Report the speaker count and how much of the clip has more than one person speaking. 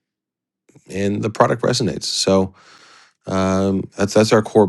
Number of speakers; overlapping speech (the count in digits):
1, no overlap